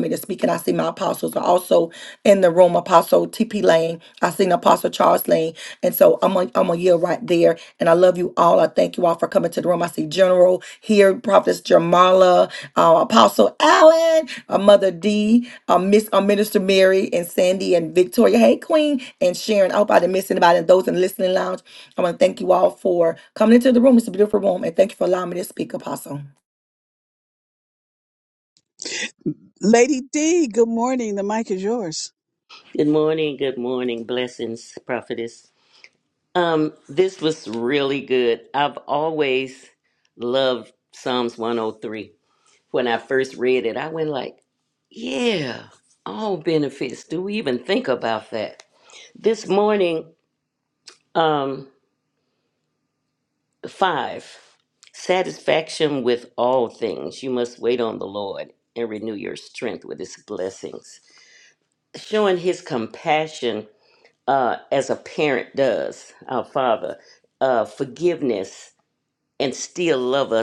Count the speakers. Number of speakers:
three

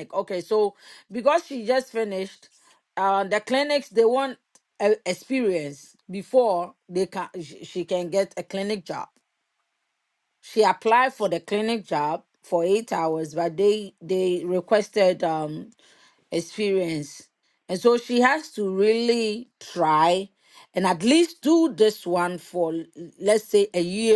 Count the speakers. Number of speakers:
one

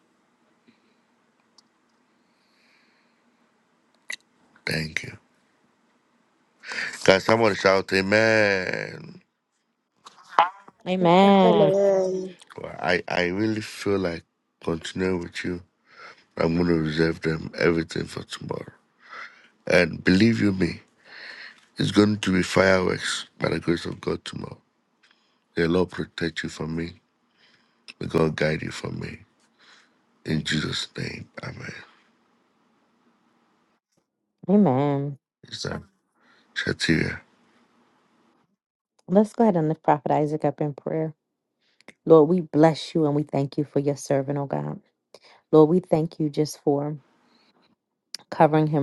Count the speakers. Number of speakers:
three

